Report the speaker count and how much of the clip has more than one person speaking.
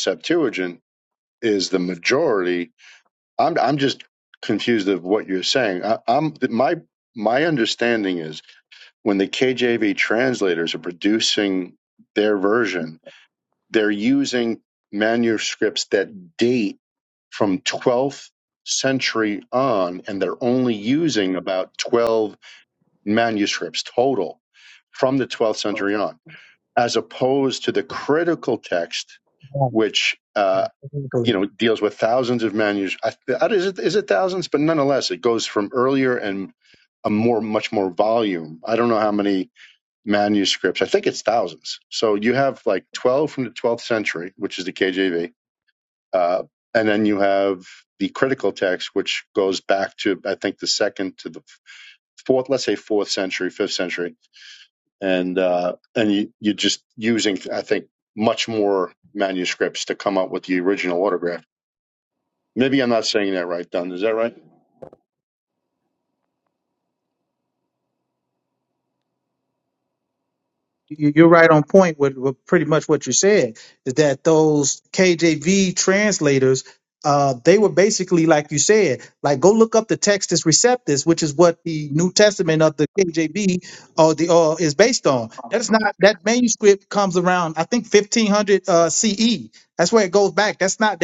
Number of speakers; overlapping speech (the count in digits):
2, no overlap